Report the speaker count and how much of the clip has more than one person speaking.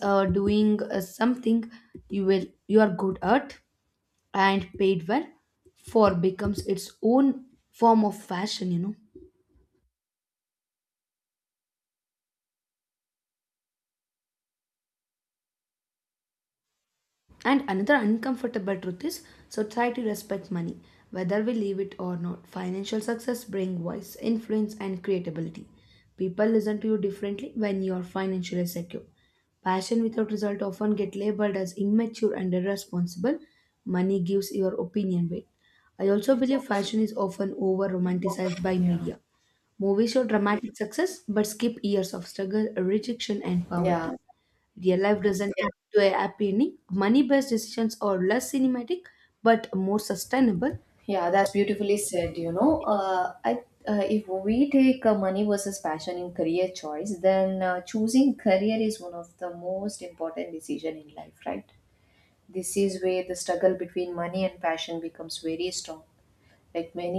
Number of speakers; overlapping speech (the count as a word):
two, about 1%